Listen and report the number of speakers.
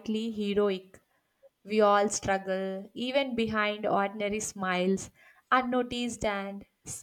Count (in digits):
1